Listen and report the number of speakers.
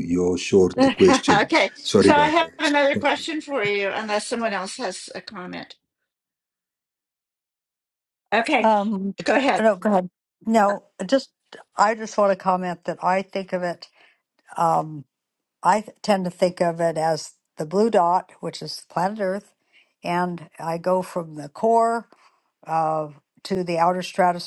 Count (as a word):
three